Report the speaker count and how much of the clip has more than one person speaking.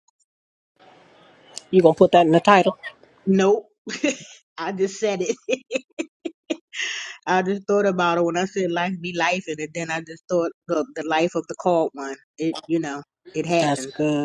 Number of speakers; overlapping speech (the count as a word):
two, about 3%